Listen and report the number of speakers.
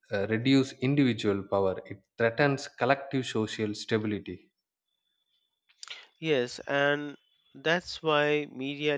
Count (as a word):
two